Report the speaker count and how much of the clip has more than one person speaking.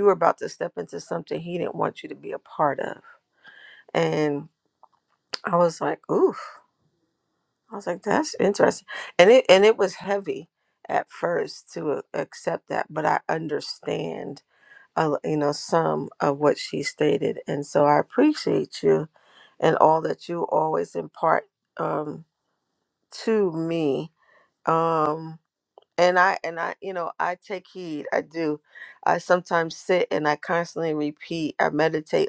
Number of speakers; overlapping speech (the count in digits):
1, no overlap